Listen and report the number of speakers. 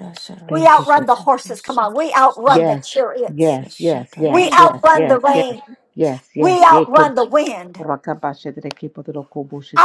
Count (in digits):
3